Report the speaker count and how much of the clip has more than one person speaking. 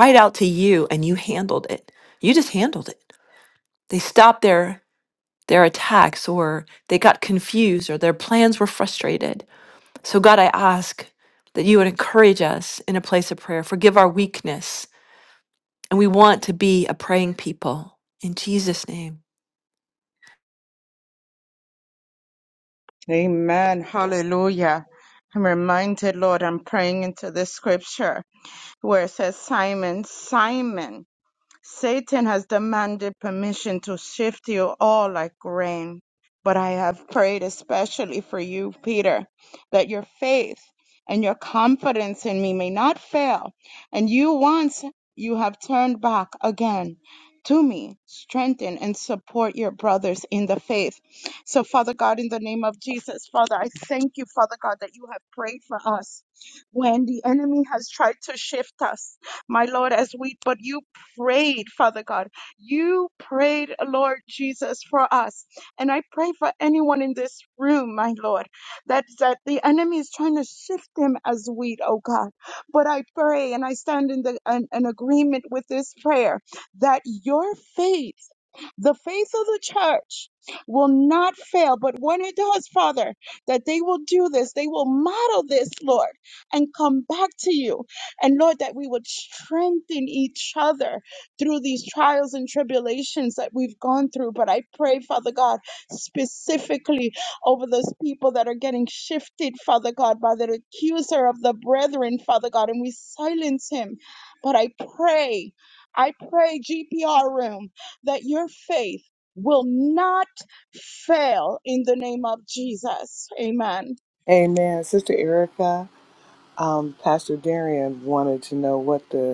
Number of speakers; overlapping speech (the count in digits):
3, no overlap